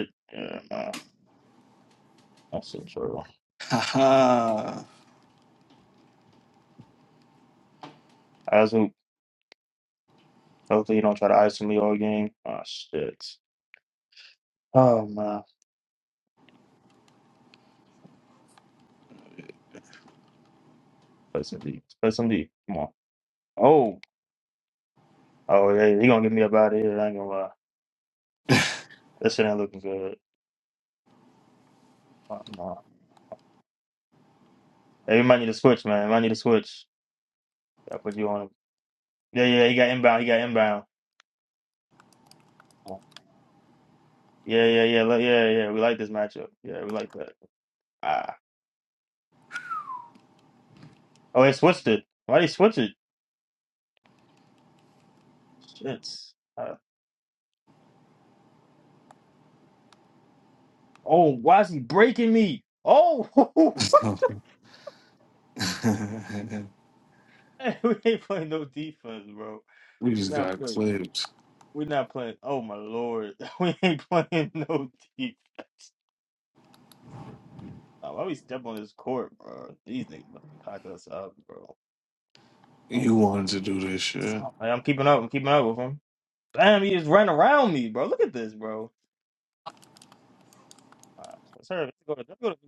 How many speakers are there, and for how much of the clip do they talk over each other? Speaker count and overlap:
two, about 1%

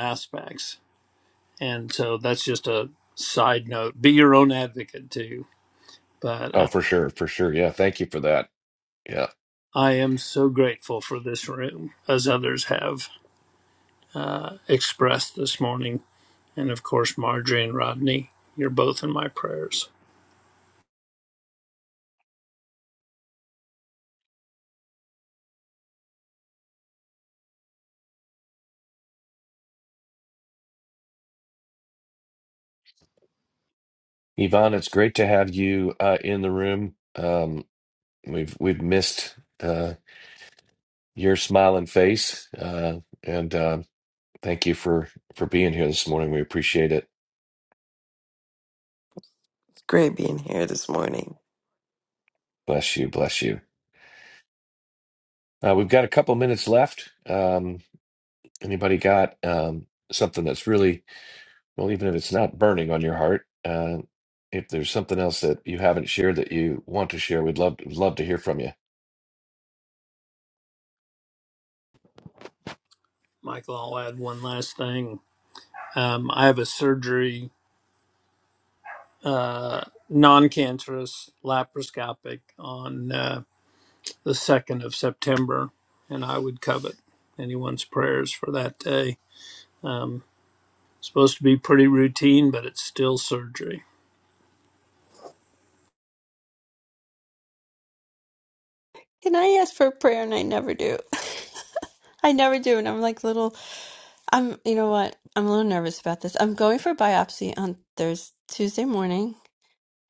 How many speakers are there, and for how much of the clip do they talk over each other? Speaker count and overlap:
four, under 1%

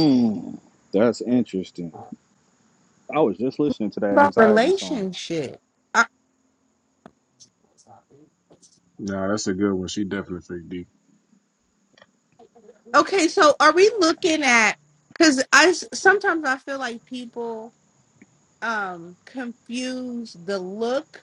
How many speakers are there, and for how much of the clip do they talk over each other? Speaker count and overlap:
three, about 5%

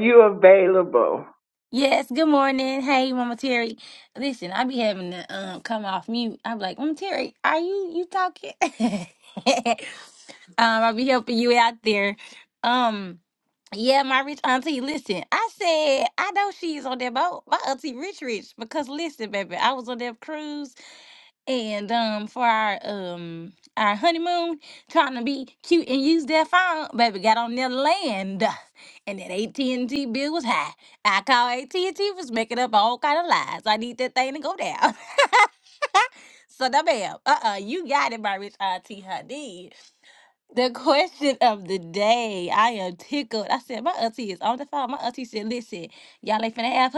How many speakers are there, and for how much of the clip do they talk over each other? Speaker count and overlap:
two, no overlap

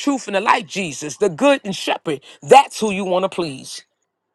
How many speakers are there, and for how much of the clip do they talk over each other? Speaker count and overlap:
one, no overlap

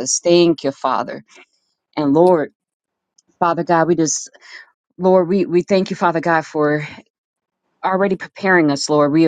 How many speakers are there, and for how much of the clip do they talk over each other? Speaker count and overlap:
one, no overlap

